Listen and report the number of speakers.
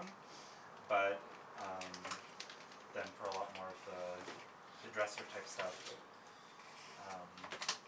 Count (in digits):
1